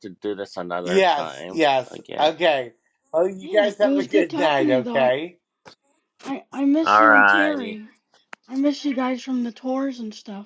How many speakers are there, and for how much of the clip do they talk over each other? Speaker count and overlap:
three, about 39%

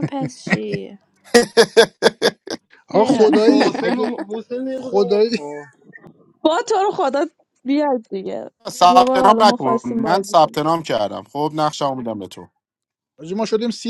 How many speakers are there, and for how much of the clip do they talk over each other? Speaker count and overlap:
five, about 24%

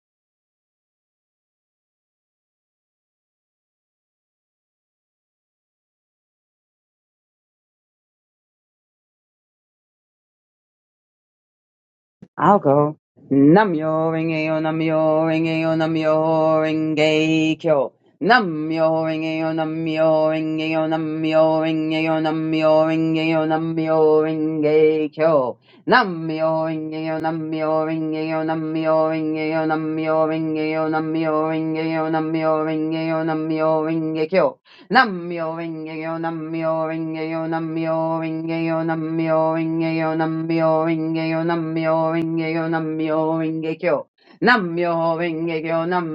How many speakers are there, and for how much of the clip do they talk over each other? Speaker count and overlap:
one, no overlap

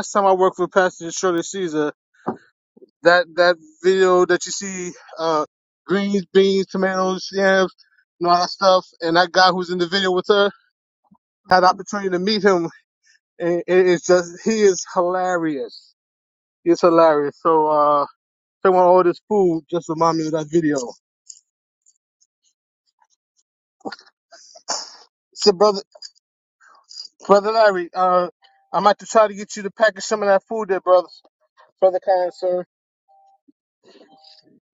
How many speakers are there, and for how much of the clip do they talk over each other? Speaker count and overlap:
one, no overlap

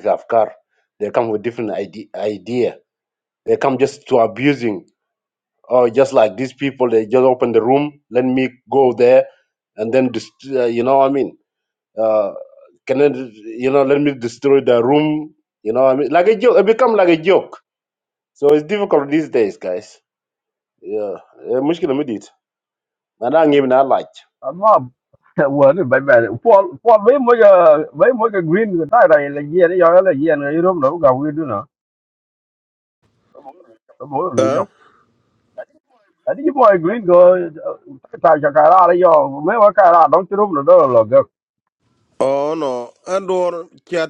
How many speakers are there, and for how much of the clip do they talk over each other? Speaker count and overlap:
three, about 1%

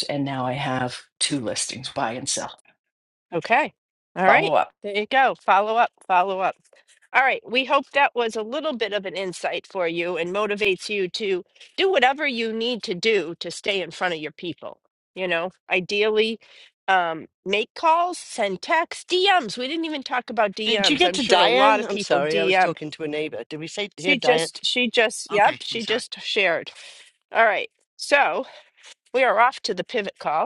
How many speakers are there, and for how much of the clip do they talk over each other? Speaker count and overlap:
three, about 11%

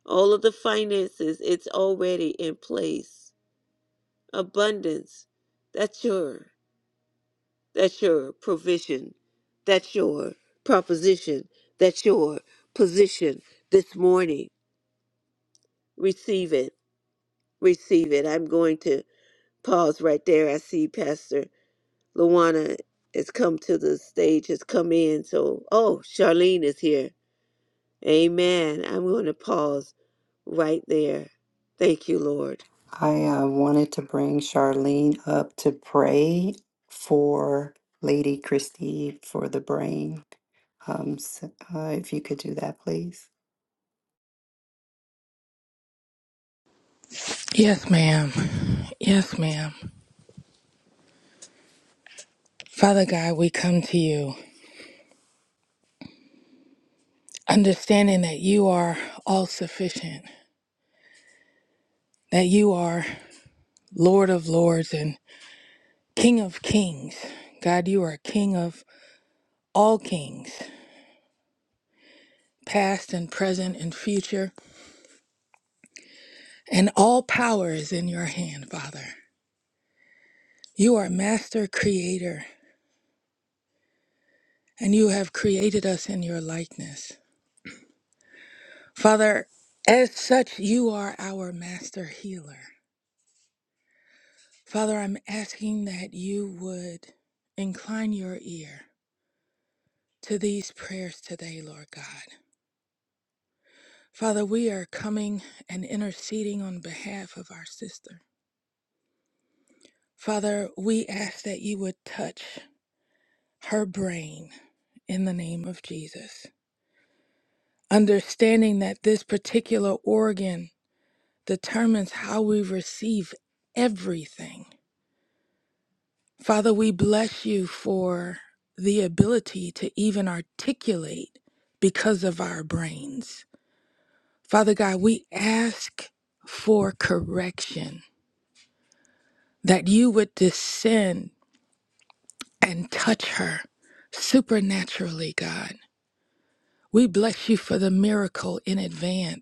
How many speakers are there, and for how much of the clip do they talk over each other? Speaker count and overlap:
three, no overlap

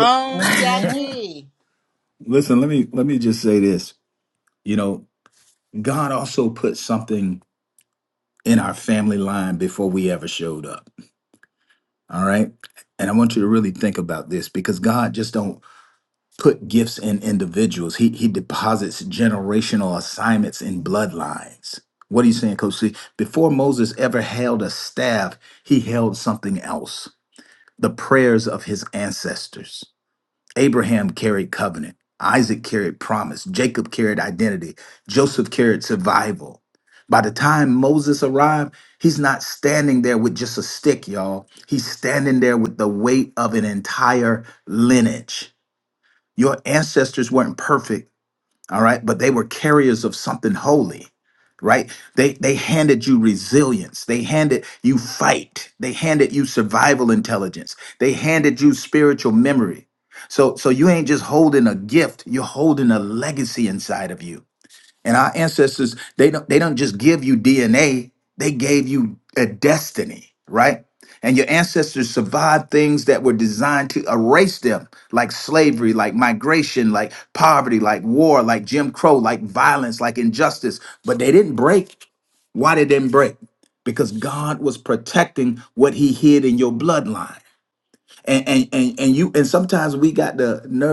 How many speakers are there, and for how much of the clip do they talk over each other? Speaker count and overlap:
two, under 1%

